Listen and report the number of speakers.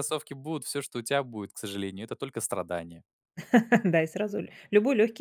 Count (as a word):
two